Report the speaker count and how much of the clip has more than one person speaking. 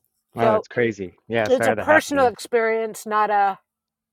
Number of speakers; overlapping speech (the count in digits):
2, about 27%